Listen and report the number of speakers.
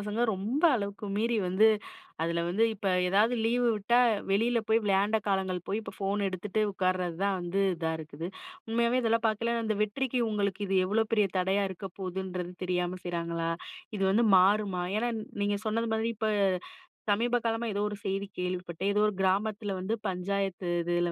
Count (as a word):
one